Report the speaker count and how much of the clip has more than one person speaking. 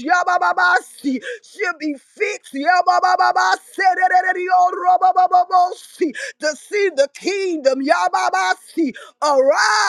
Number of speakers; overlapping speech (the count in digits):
1, no overlap